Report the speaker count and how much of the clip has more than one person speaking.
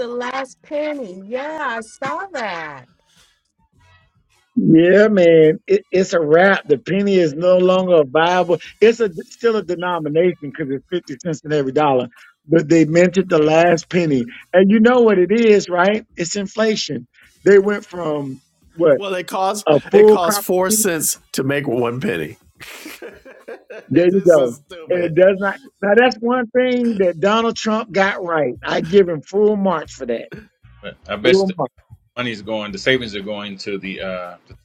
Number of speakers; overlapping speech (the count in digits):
4, about 5%